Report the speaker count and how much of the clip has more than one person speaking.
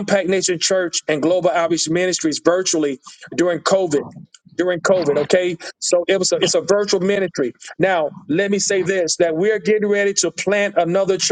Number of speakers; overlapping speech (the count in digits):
1, no overlap